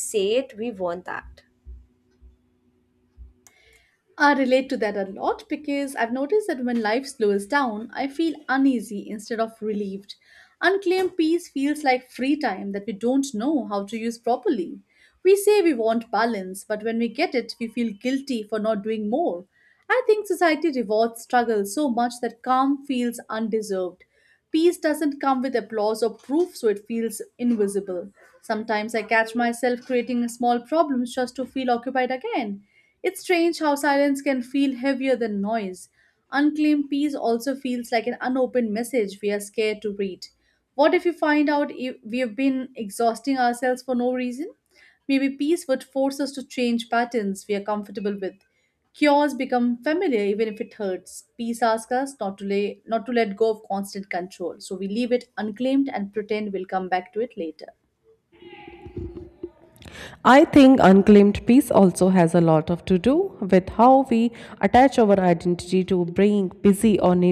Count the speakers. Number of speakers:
3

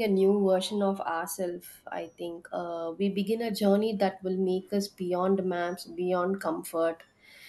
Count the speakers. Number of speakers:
1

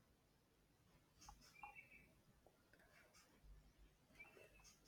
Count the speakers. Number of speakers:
0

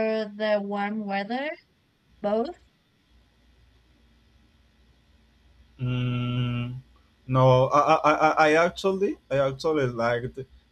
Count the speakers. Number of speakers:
2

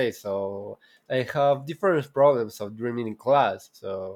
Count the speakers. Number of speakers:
1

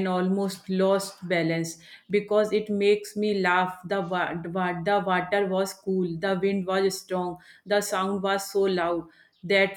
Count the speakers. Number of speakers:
1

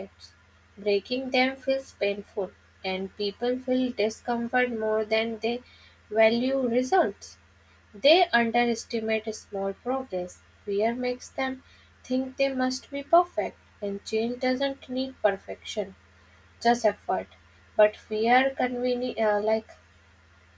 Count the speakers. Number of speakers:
1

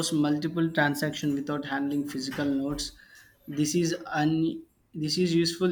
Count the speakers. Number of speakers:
1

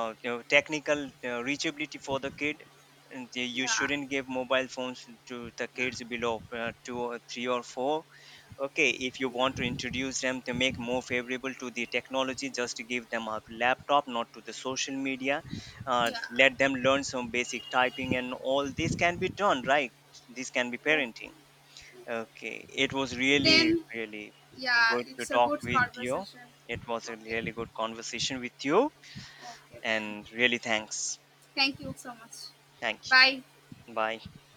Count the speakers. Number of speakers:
2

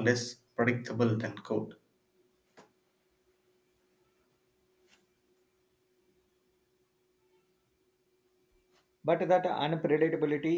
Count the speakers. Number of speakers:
2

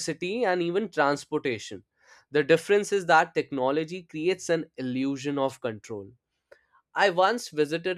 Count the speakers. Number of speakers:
1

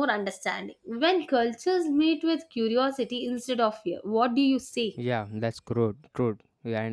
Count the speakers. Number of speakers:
2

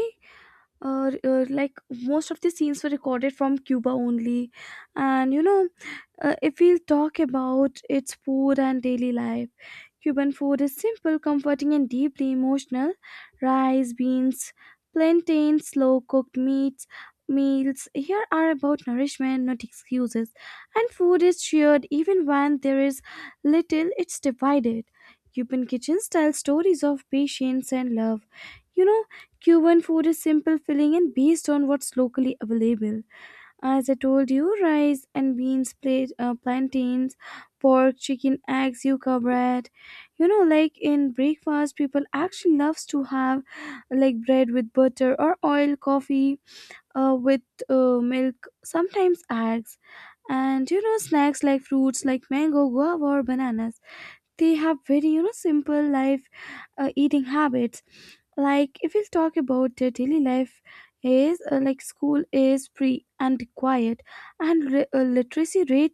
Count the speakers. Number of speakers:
1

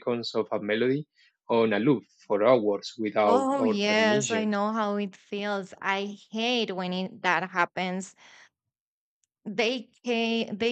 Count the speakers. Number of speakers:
2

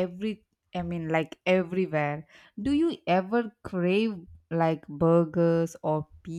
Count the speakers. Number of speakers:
1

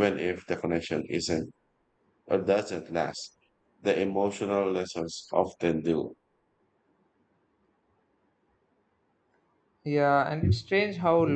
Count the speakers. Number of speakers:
2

